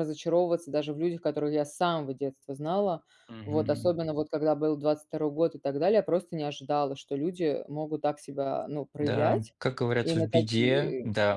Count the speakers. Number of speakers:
2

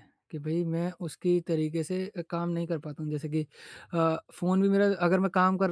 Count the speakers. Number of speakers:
1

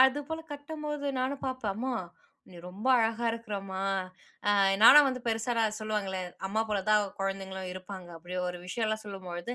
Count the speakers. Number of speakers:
1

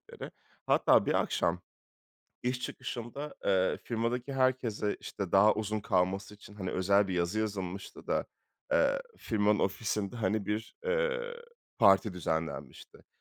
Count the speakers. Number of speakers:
1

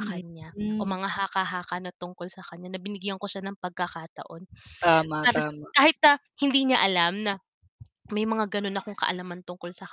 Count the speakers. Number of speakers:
2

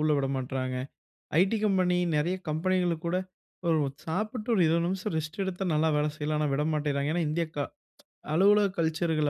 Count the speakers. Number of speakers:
1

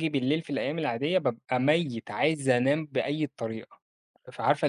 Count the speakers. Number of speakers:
1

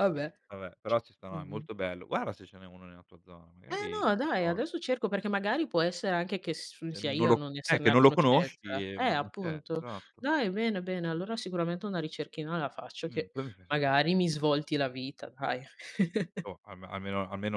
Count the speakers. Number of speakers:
2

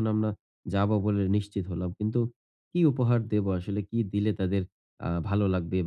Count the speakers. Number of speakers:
1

